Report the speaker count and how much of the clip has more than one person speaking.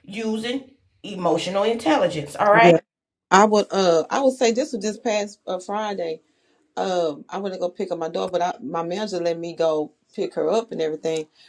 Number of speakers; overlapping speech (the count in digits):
2, about 2%